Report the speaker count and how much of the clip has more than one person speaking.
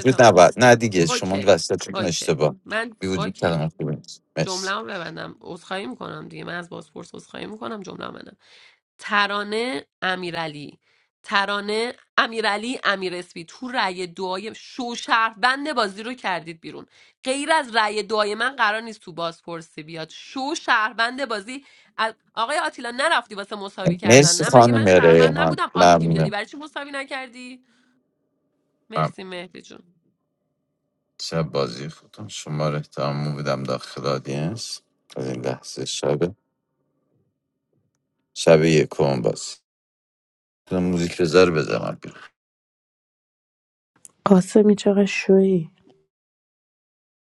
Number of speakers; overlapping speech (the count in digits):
3, about 9%